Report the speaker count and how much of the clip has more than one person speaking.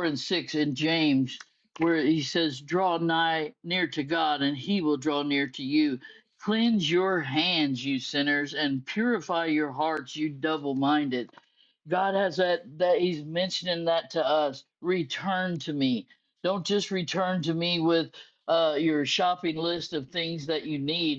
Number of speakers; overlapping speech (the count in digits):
1, no overlap